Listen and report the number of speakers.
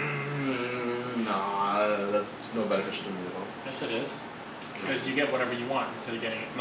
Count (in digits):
2